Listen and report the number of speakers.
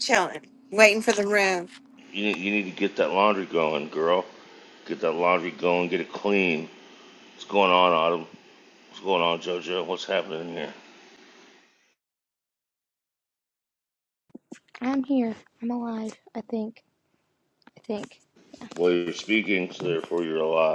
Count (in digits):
3